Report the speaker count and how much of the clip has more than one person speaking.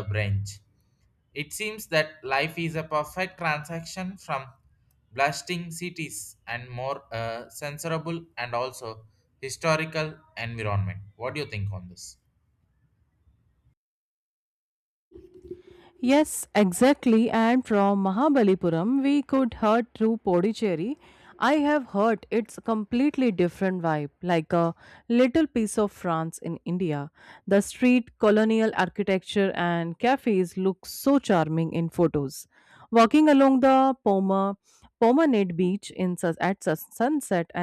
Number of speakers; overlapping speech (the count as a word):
two, no overlap